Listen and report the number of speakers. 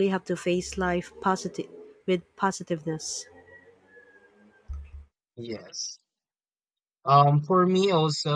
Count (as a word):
two